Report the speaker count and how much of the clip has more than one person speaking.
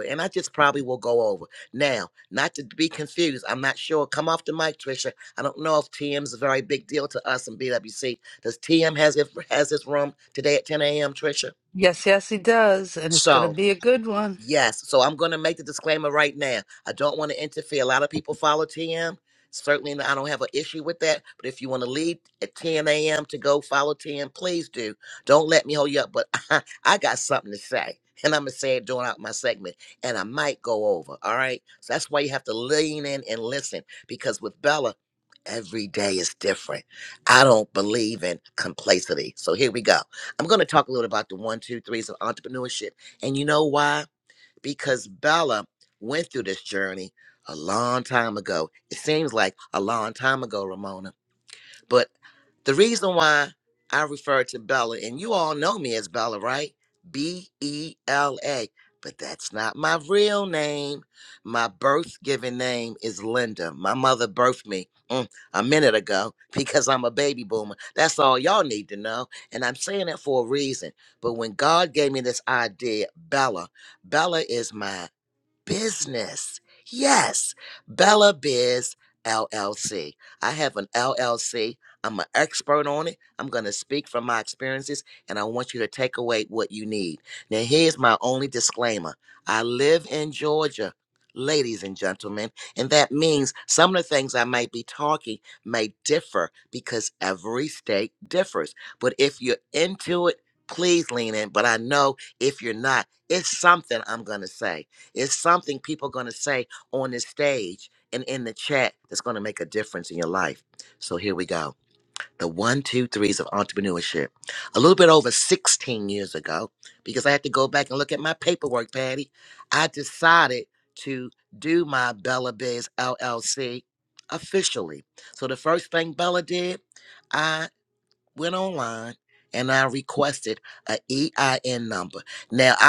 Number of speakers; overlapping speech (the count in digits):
2, under 1%